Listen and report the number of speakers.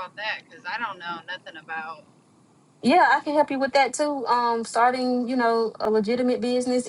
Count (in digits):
2